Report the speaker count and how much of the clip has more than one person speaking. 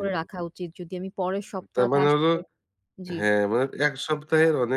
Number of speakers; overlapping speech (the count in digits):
2, about 19%